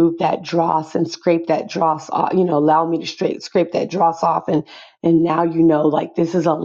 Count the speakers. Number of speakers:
1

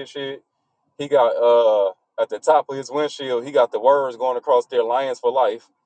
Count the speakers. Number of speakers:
1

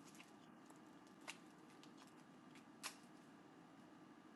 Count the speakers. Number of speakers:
0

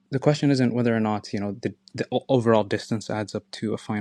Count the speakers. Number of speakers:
1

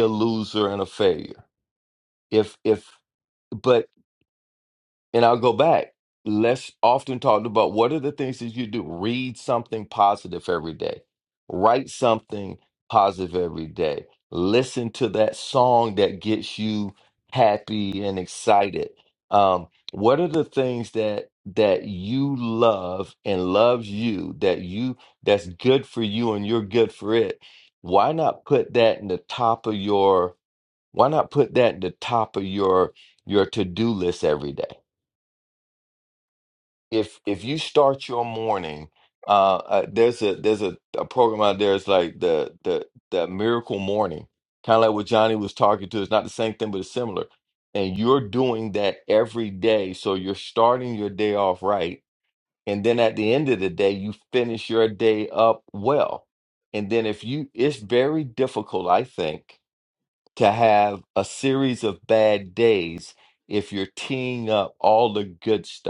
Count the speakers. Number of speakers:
1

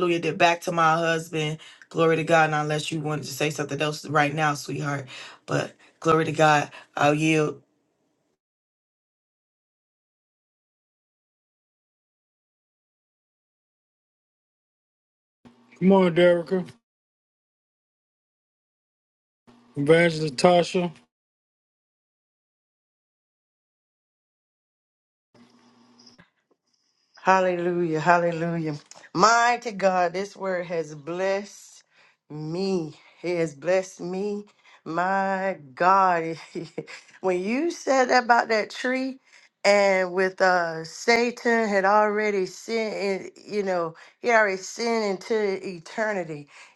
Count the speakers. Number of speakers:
3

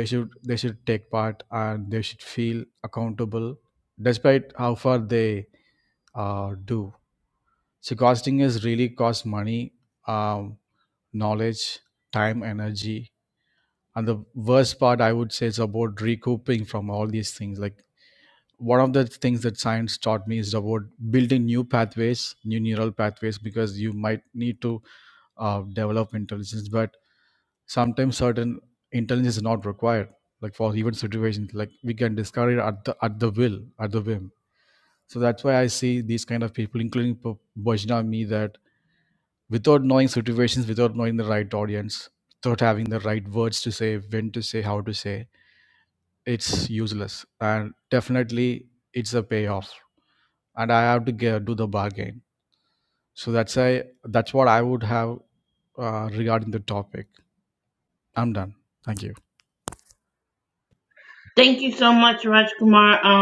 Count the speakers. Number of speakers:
2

